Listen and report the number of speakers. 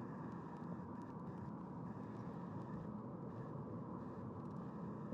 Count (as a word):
zero